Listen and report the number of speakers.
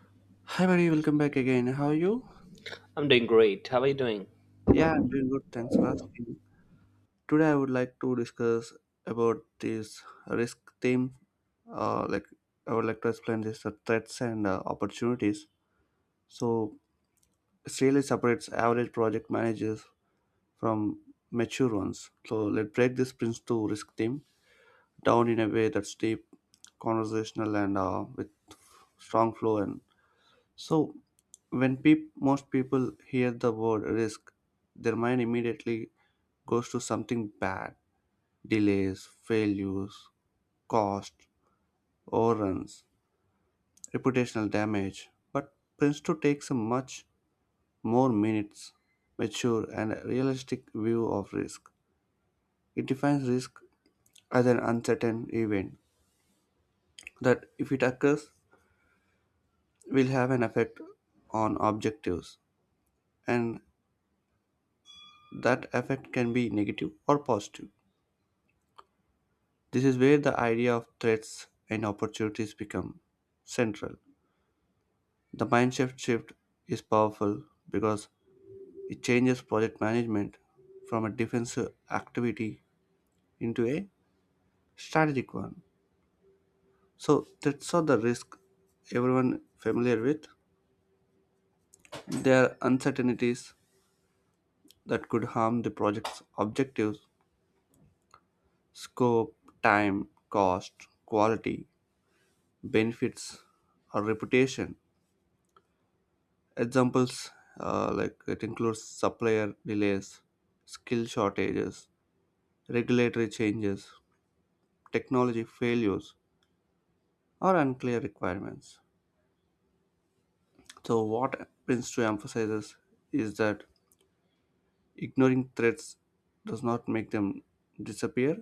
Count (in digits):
2